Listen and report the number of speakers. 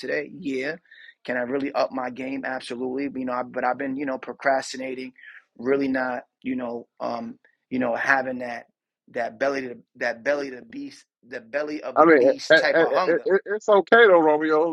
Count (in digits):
2